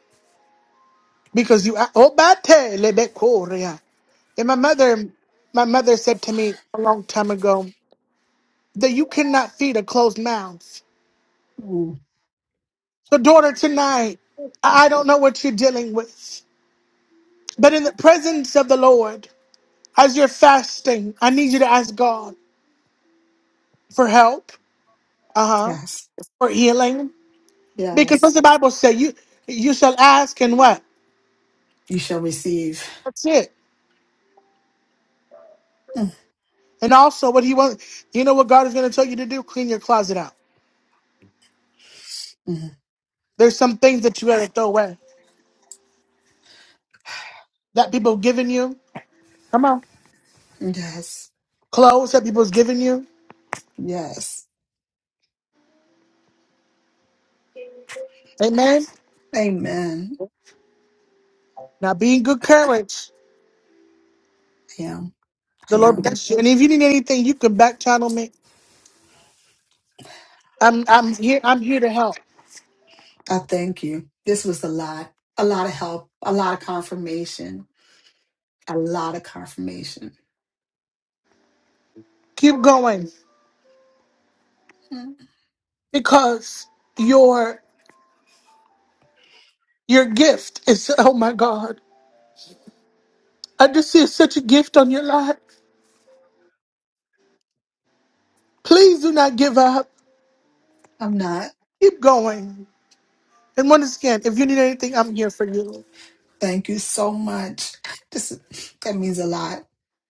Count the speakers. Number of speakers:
two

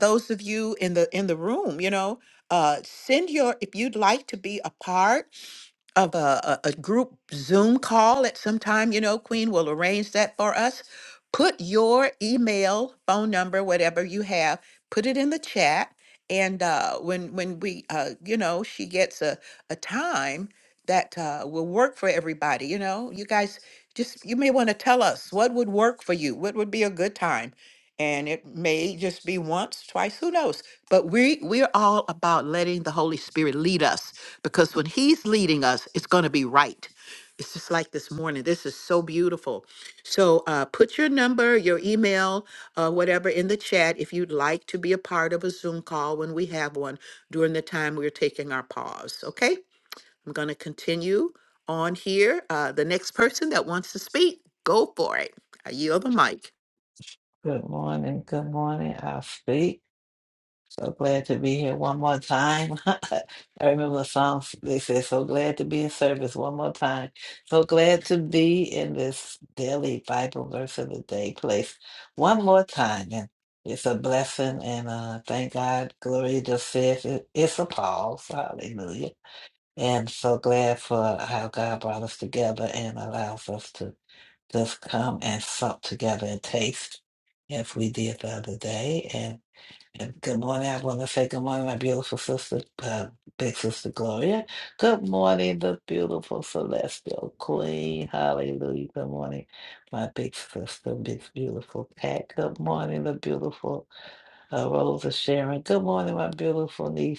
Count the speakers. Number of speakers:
two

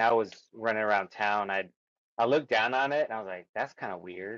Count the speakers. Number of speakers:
one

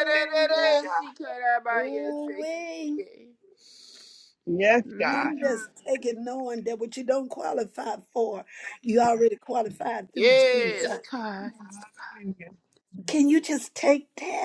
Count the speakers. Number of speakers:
three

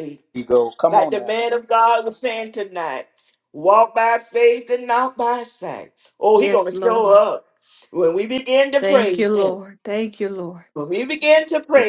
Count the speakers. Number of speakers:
three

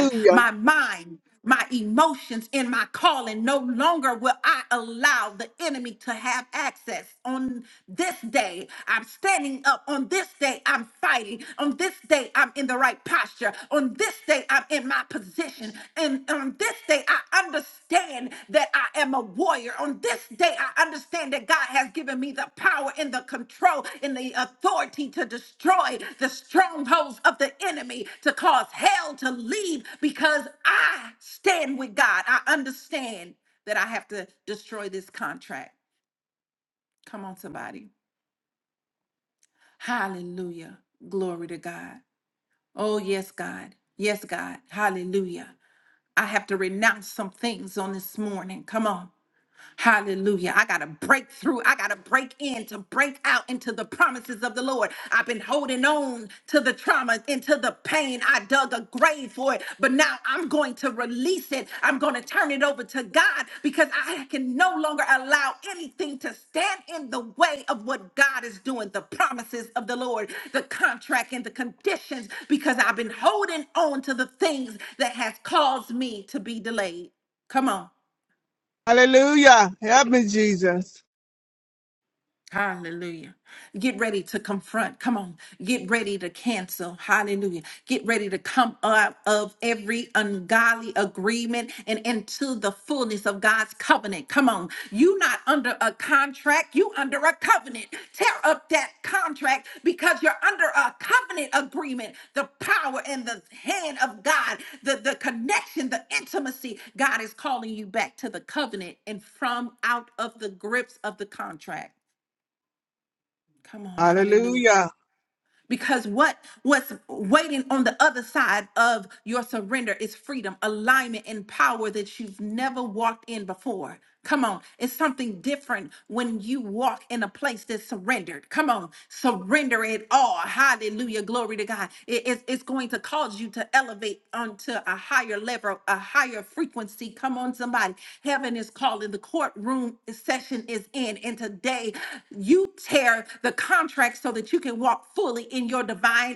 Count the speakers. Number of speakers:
two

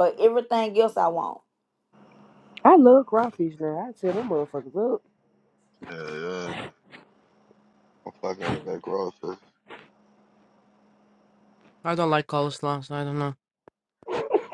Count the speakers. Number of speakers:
four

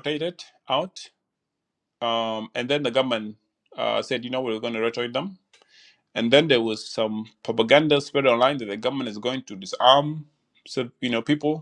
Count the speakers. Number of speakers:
one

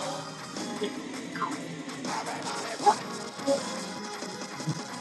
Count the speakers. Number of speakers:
zero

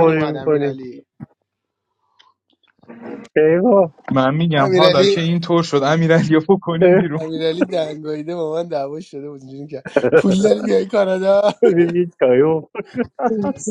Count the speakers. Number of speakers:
three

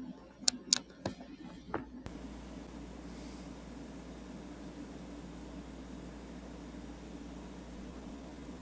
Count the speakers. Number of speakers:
zero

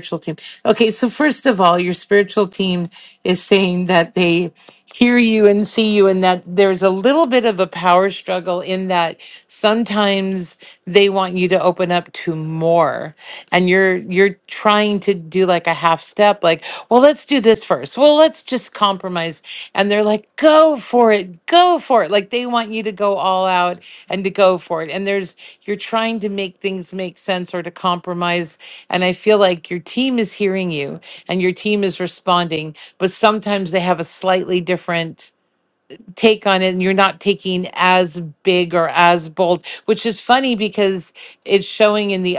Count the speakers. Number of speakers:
one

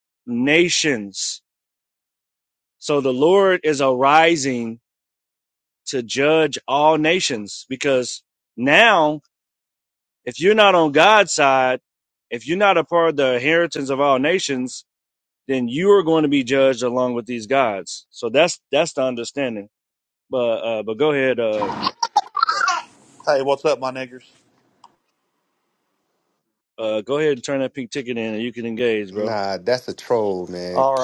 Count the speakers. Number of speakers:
three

